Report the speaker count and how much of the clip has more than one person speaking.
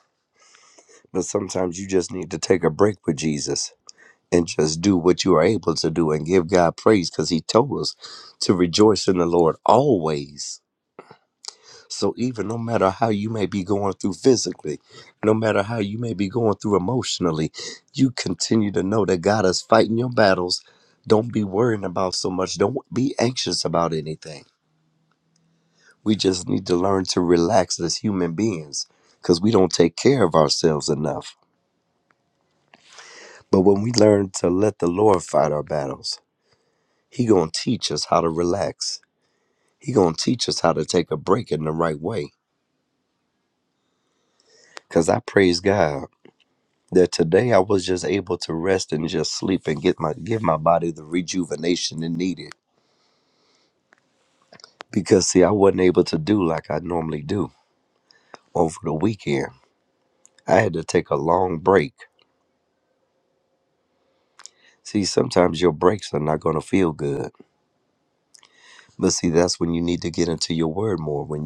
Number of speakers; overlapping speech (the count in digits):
1, no overlap